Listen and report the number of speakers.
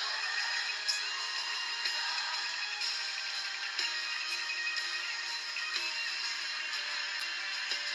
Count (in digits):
0